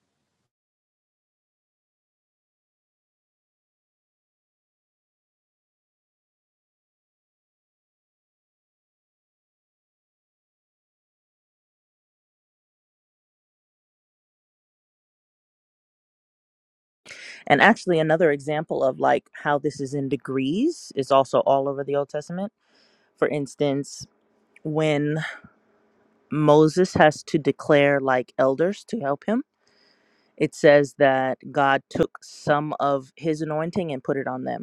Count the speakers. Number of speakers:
1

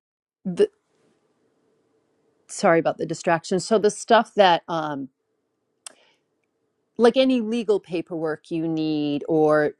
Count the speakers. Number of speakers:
1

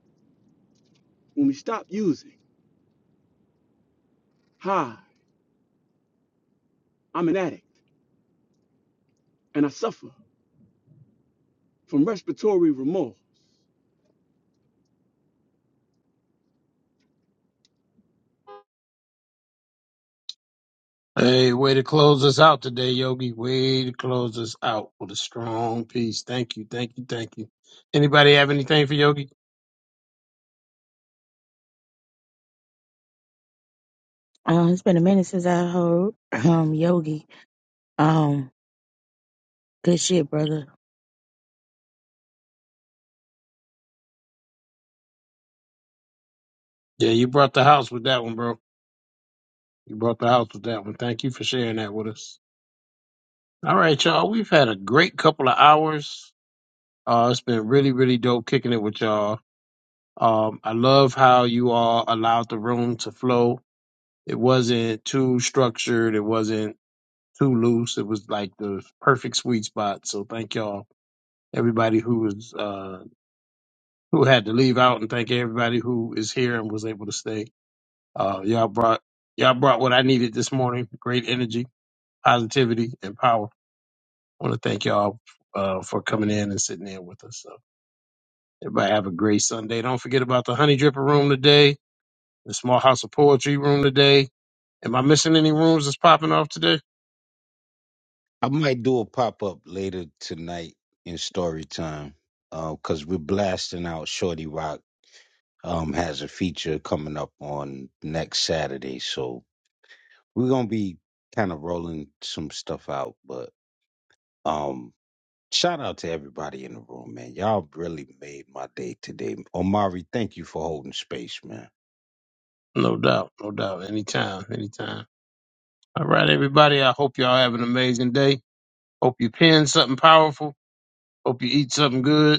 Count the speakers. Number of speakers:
4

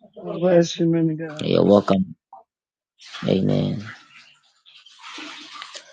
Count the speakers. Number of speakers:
2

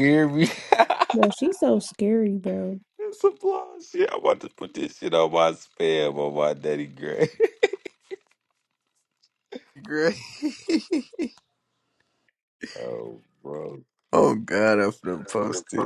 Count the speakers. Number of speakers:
3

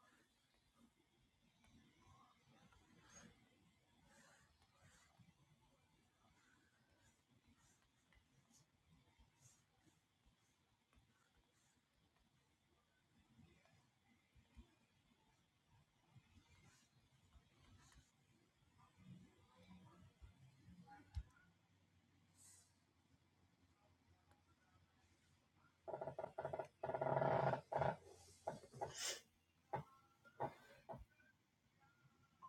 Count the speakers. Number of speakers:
0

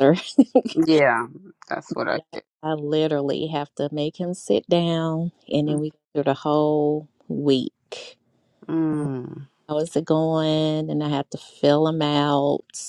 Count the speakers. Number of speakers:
2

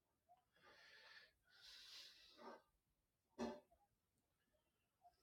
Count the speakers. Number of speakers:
0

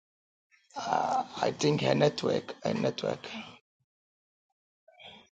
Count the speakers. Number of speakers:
1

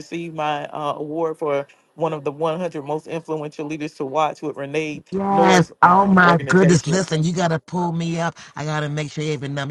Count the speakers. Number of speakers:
2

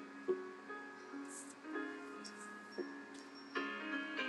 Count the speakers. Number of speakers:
0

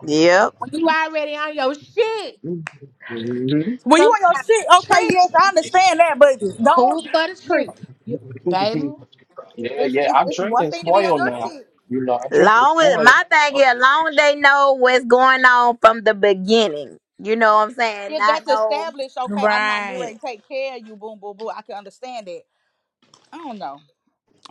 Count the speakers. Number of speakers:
4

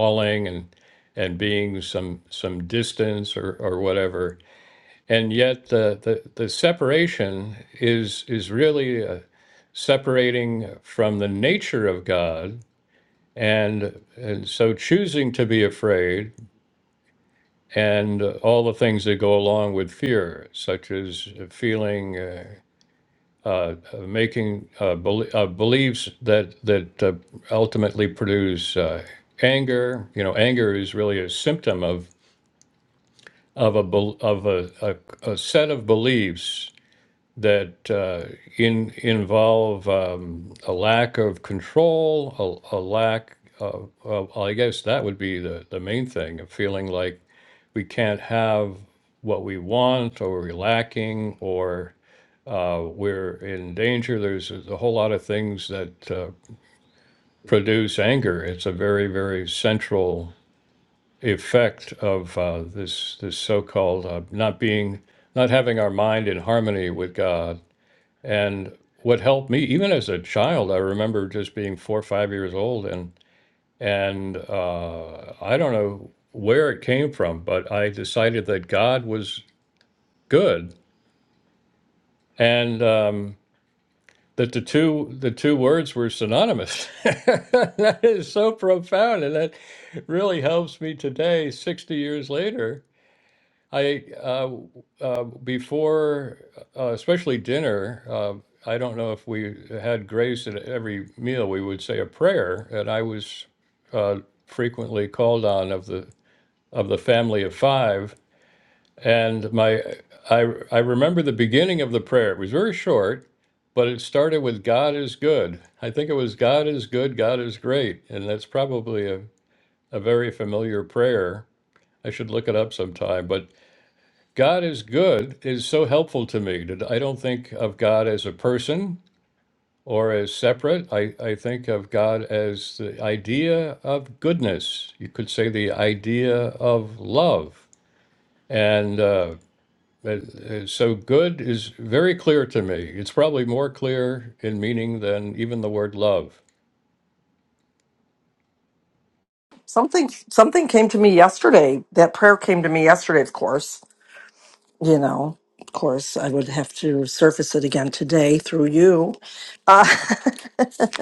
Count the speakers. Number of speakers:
2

